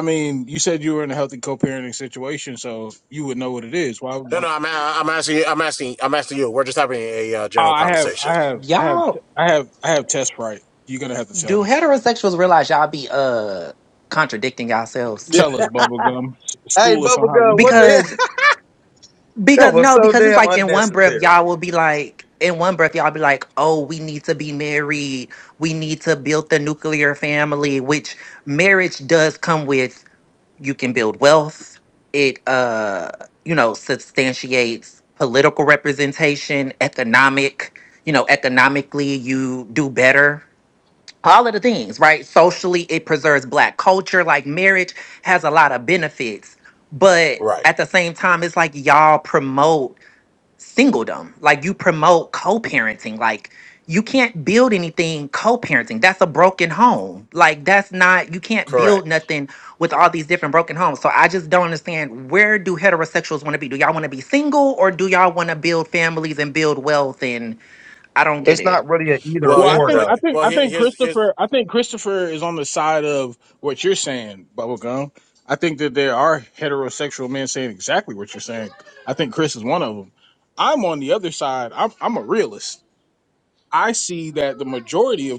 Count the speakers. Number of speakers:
four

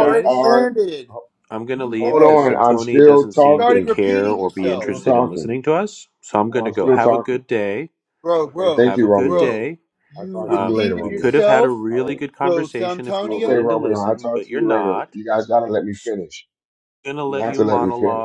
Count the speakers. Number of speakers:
three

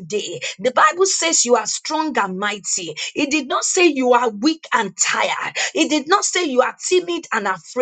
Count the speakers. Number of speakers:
one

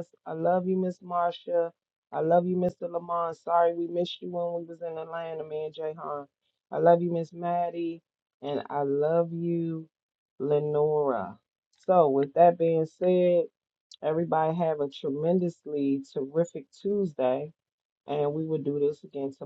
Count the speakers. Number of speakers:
one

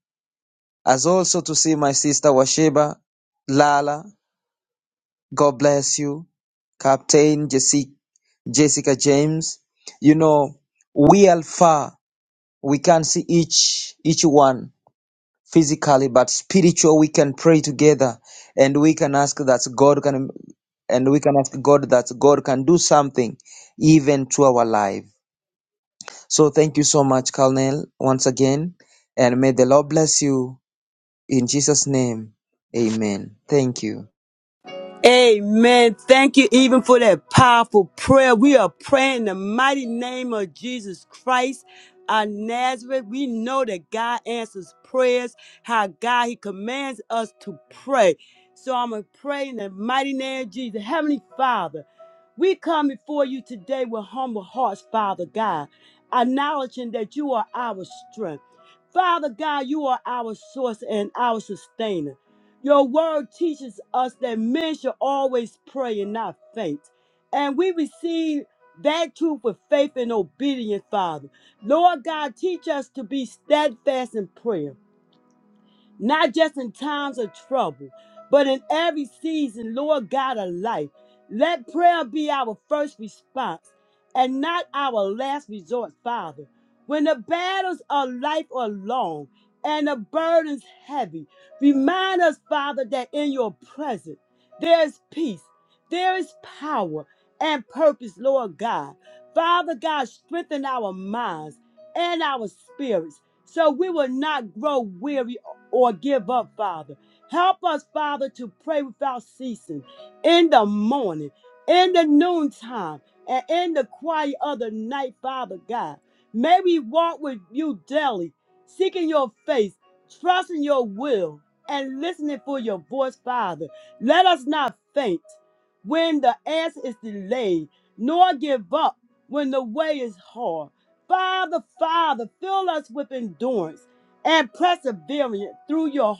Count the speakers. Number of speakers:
two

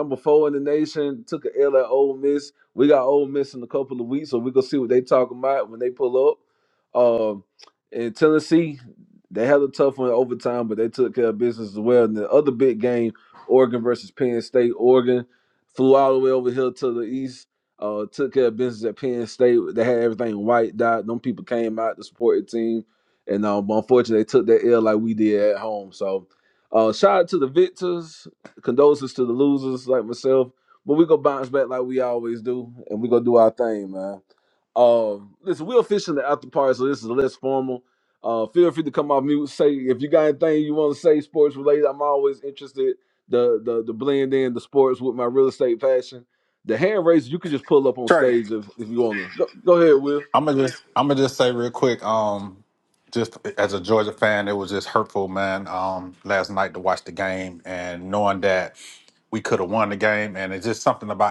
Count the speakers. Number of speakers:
two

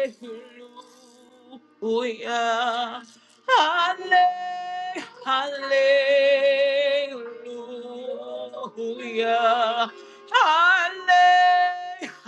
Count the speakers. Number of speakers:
one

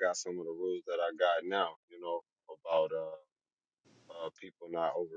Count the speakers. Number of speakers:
one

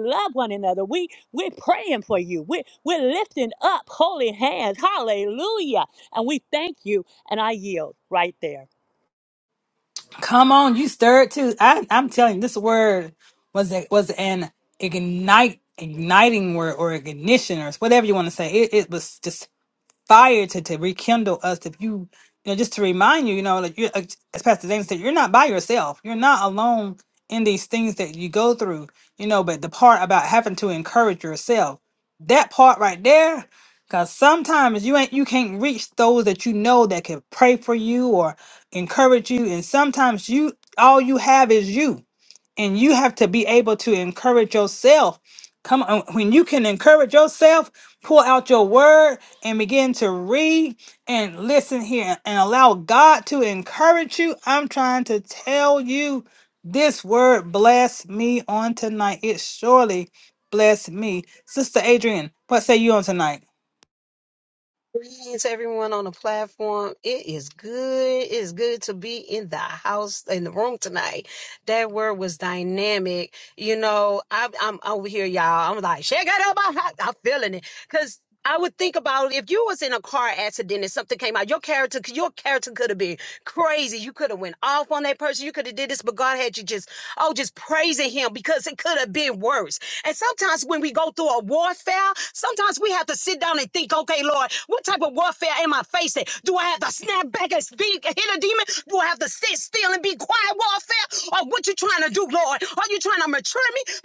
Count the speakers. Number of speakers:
three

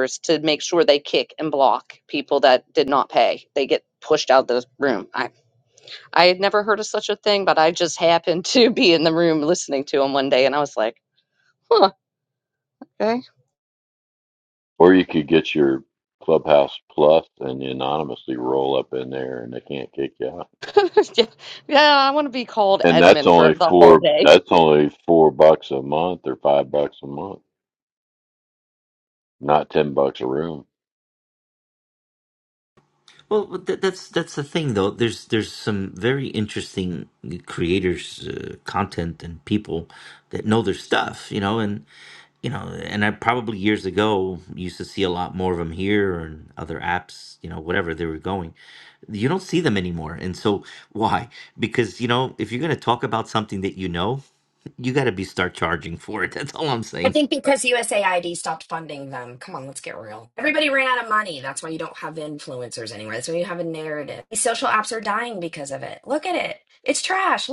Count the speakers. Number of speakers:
four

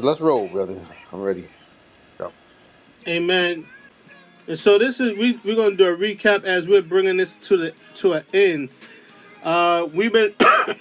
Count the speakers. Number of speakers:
two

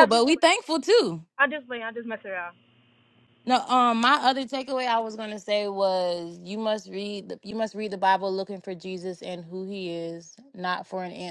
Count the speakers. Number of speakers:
two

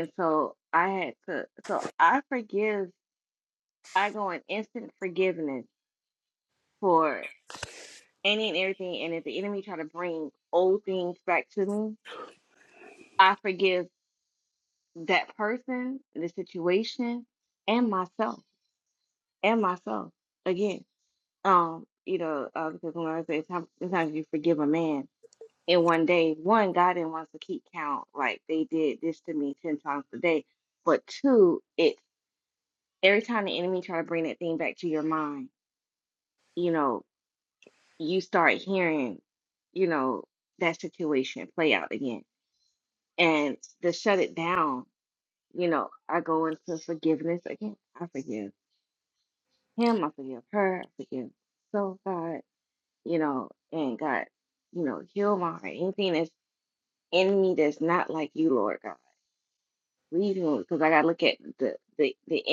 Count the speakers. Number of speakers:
one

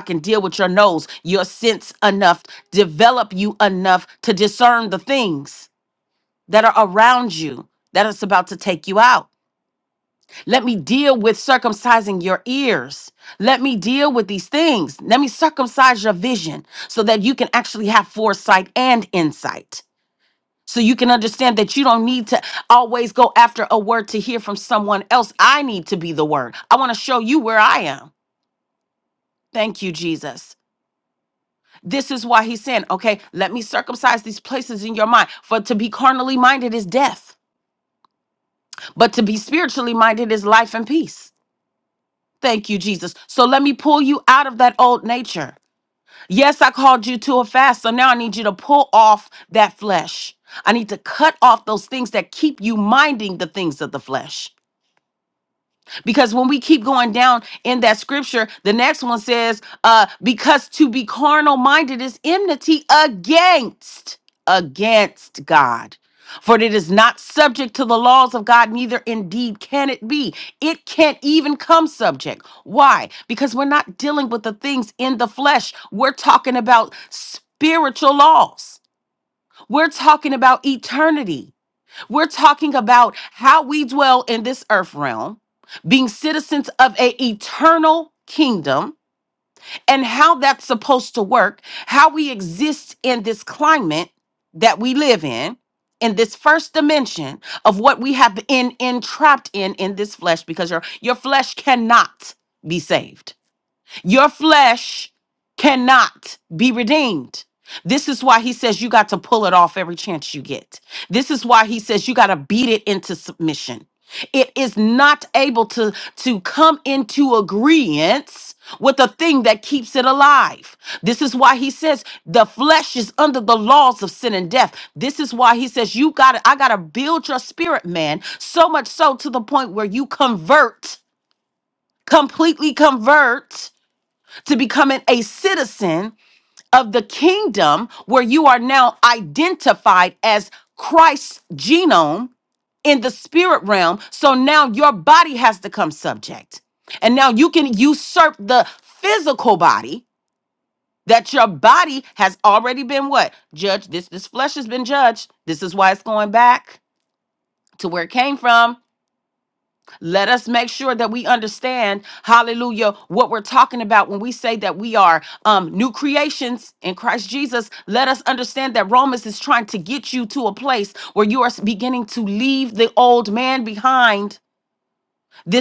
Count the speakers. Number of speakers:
one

